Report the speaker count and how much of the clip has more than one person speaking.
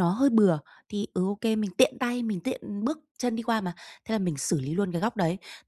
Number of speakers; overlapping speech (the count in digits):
1, no overlap